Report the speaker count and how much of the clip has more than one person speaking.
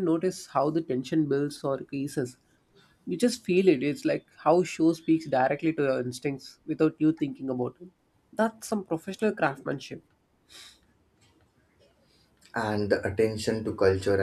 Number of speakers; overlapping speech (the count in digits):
2, no overlap